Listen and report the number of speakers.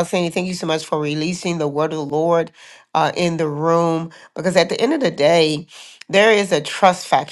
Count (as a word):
one